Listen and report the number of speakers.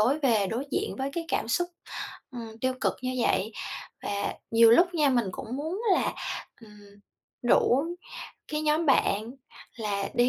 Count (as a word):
one